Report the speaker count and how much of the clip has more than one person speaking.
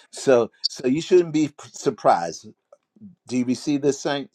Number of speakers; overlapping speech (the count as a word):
one, no overlap